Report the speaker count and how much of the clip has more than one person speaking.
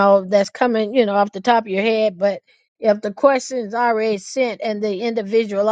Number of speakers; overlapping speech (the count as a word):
one, no overlap